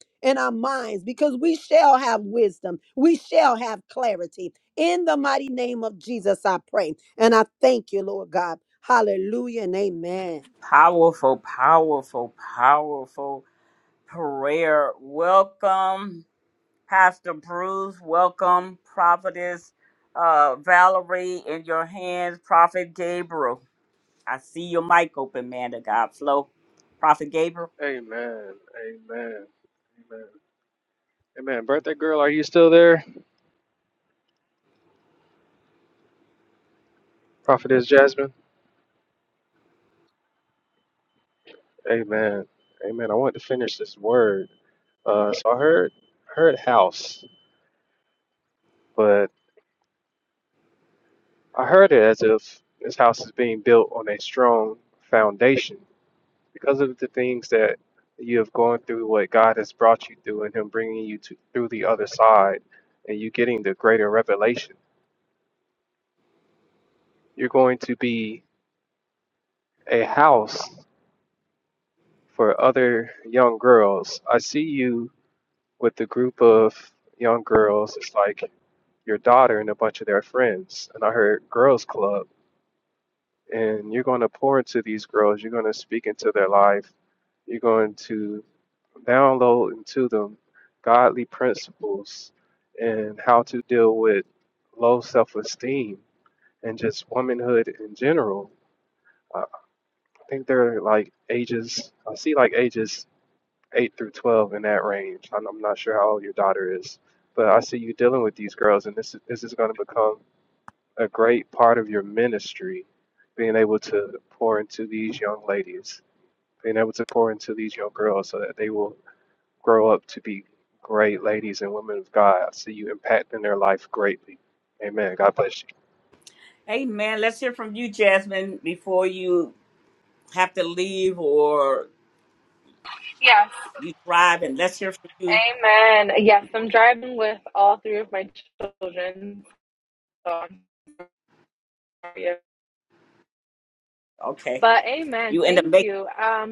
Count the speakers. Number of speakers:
4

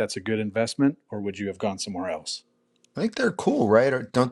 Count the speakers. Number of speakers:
2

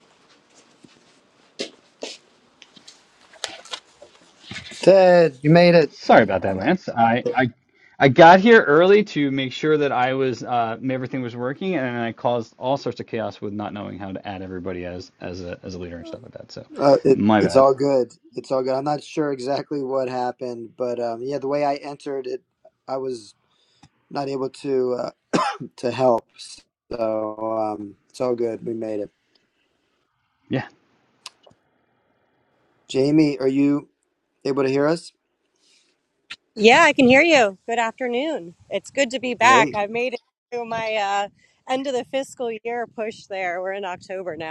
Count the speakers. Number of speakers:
3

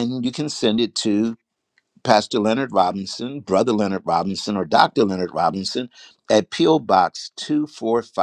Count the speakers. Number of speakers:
1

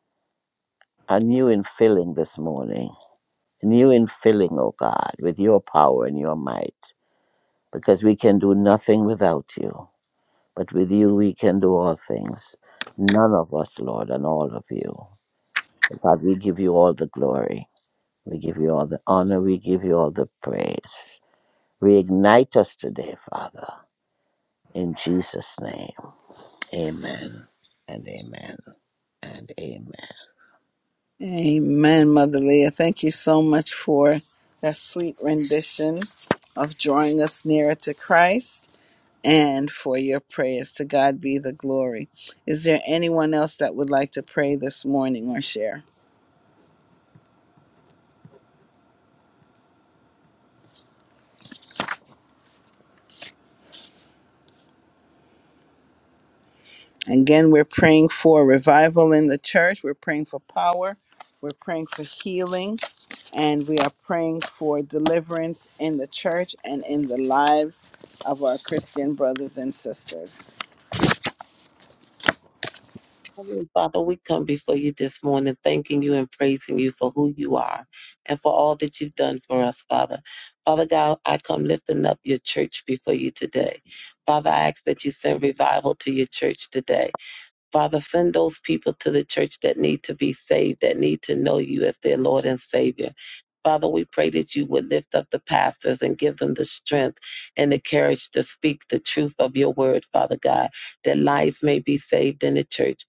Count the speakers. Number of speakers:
3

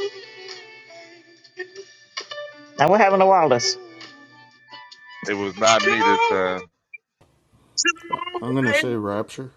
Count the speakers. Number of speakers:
3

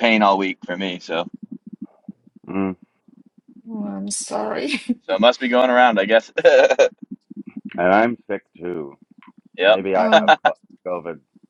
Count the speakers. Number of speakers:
3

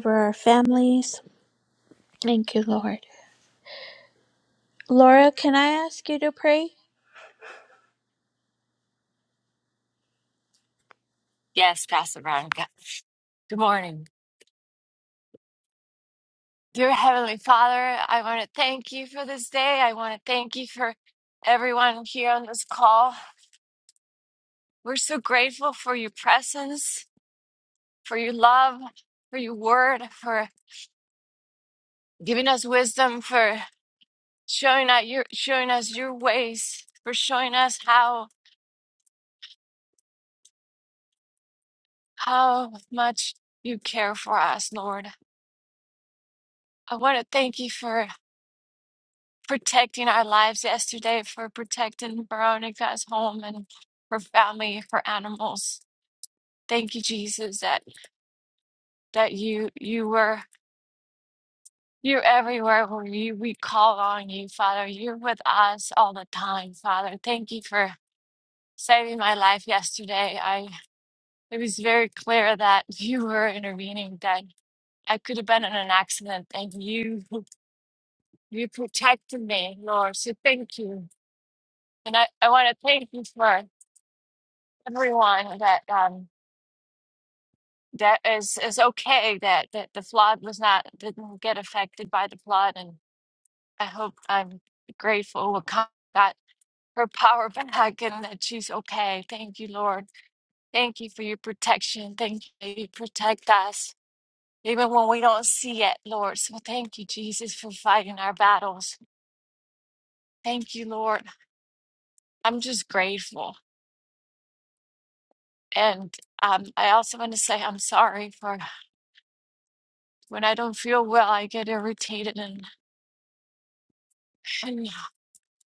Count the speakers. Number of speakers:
2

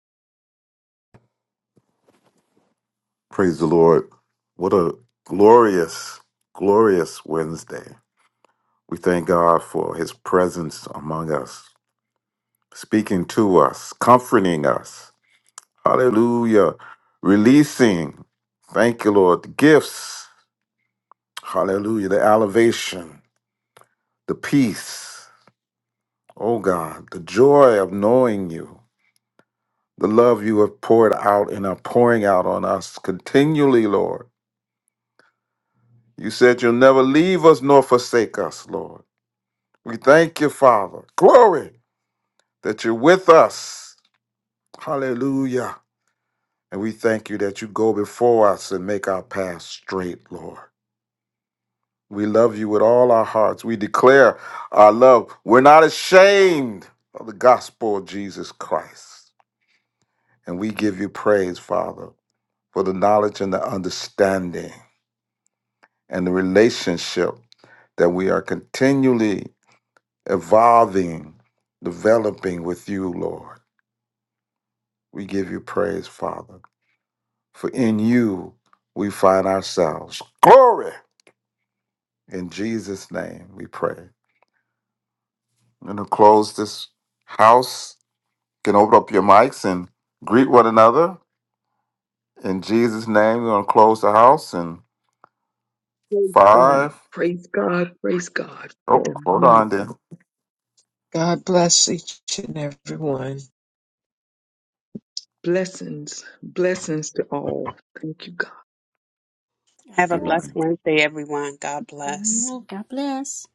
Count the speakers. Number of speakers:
5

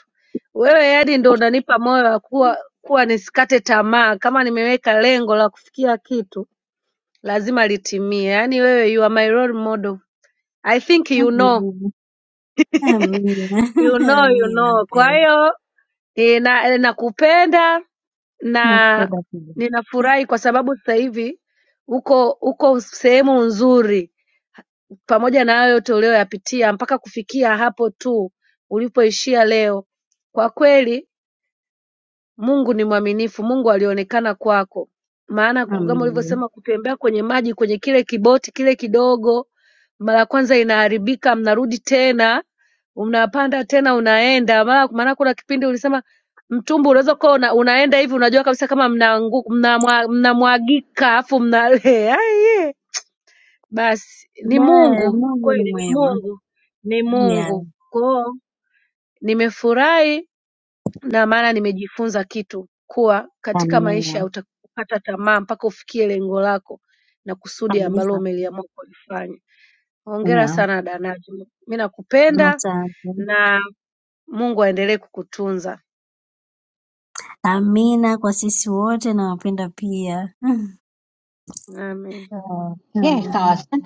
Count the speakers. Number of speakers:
3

